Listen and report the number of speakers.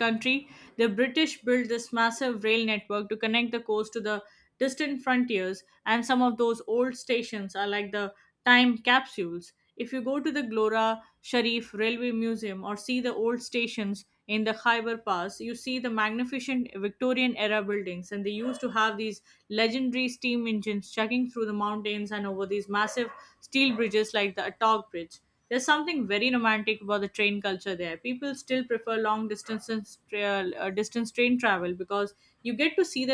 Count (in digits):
1